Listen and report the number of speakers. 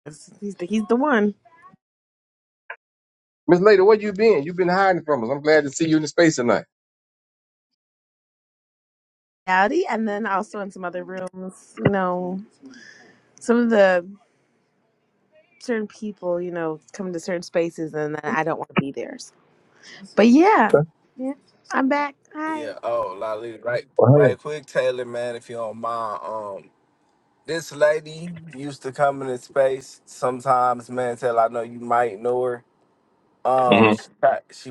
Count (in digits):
3